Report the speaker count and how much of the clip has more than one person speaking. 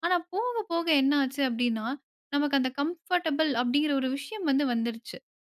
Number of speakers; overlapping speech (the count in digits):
1, no overlap